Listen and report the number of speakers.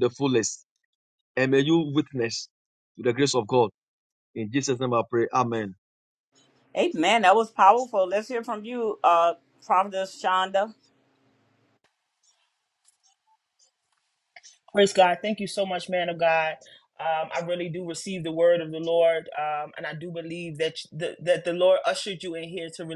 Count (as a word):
three